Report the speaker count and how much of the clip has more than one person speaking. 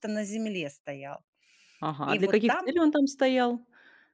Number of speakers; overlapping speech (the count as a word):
two, about 15%